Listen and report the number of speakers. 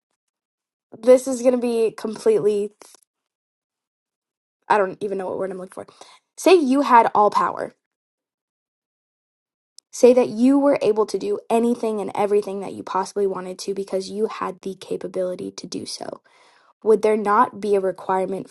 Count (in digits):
1